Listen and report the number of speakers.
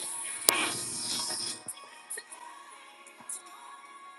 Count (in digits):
0